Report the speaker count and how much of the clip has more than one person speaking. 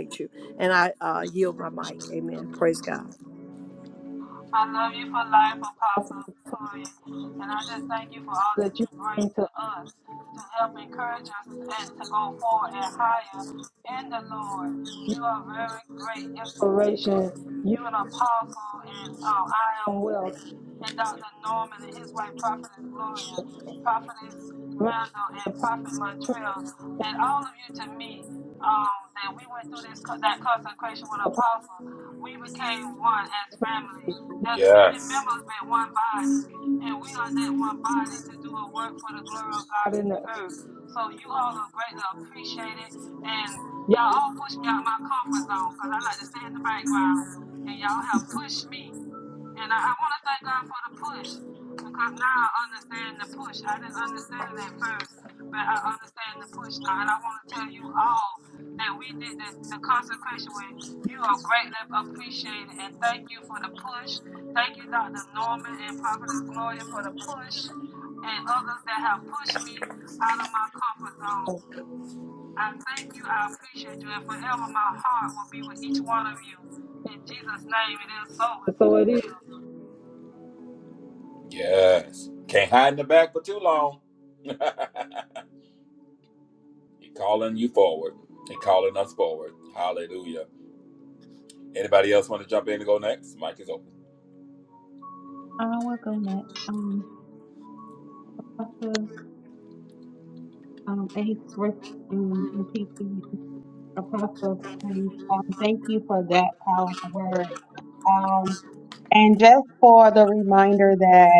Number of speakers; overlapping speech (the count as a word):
four, about 1%